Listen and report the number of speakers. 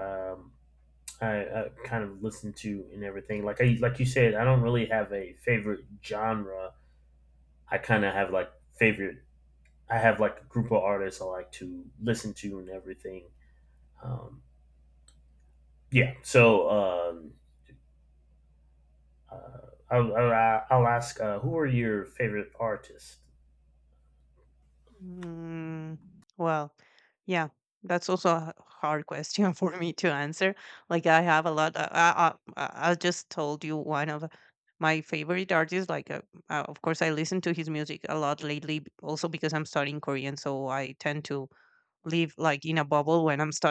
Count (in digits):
2